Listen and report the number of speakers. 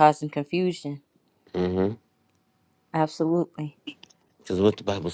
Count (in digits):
2